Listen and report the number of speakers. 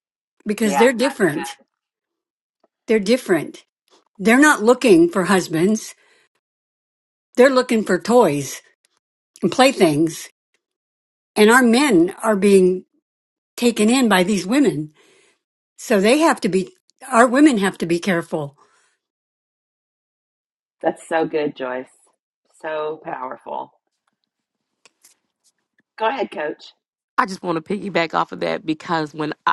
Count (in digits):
3